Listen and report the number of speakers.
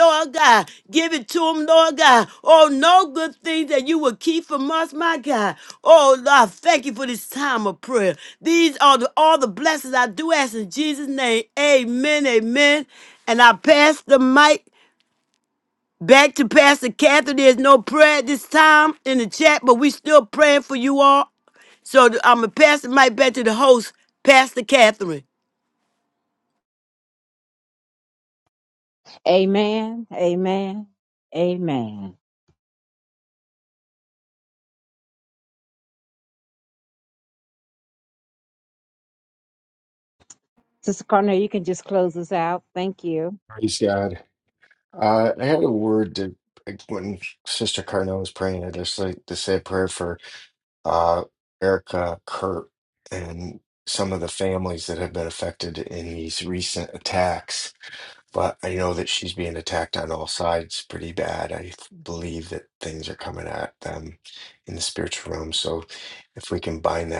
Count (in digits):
3